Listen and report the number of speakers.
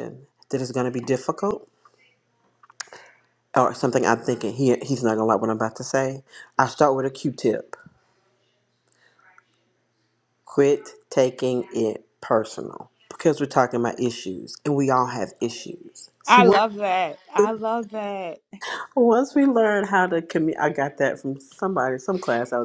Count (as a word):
two